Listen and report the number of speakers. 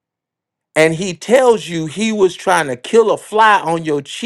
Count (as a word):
one